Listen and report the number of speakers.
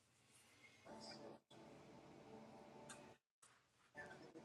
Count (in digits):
0